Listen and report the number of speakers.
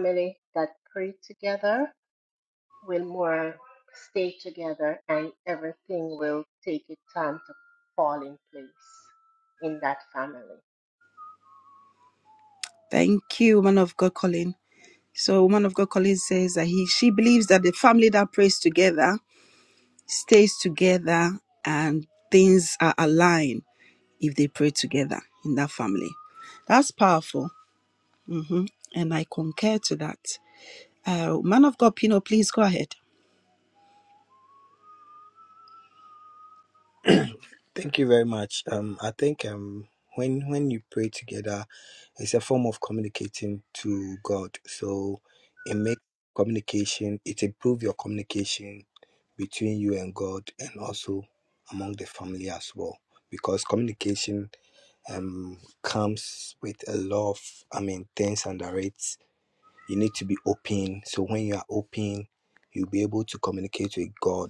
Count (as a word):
three